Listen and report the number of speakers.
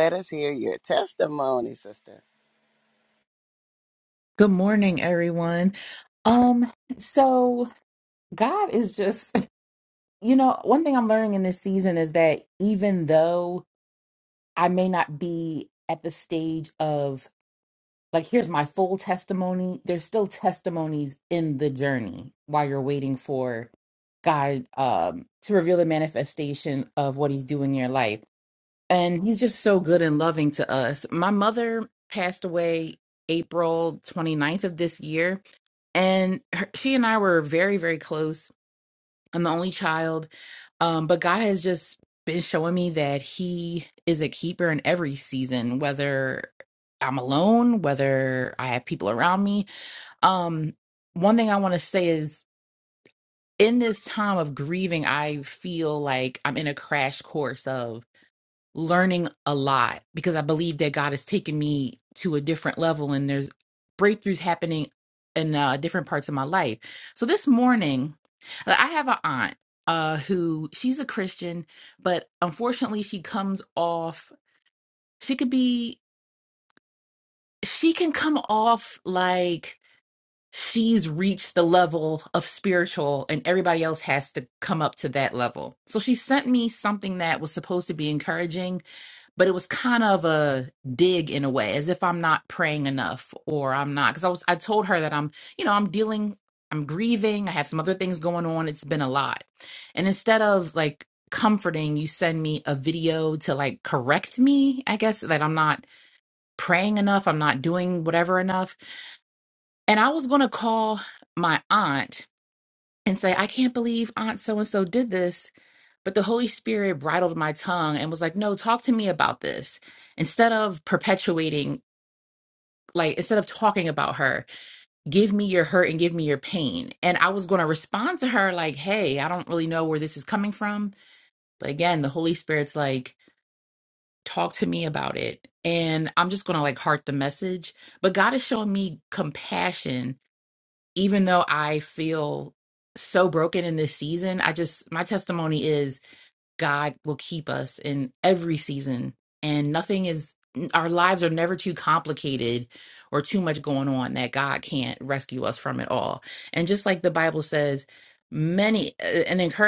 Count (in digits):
2